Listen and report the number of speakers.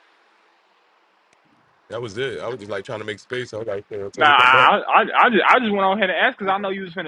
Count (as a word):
two